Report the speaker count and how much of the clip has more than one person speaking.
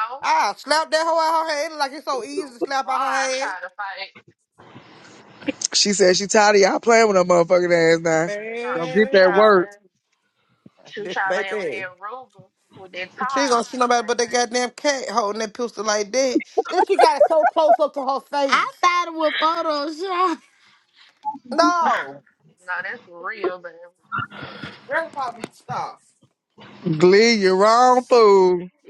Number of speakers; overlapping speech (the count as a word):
four, about 13%